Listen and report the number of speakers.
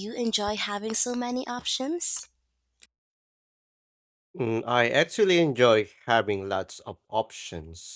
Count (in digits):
2